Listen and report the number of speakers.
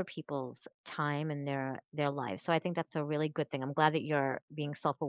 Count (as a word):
one